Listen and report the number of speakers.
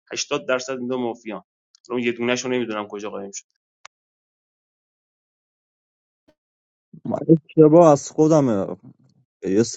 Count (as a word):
two